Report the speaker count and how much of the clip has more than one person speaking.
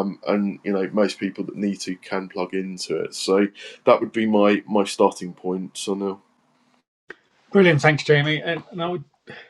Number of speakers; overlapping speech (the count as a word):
two, no overlap